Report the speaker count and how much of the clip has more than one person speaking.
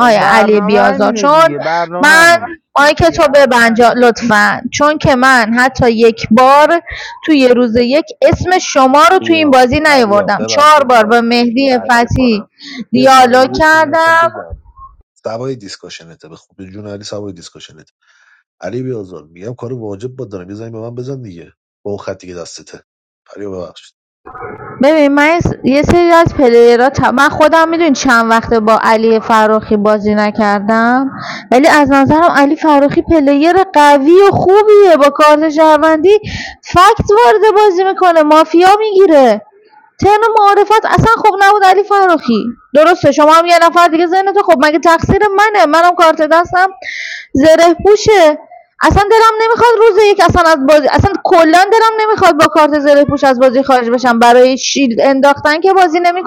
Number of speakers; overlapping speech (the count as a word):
three, about 10%